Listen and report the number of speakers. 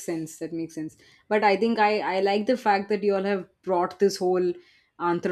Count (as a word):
one